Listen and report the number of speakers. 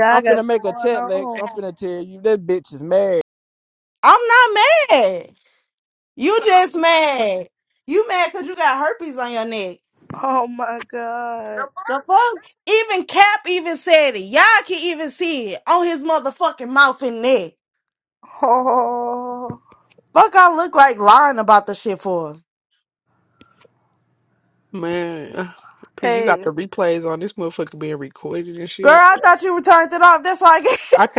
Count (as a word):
four